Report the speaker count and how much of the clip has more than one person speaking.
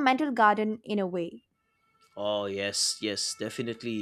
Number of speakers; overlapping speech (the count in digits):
2, no overlap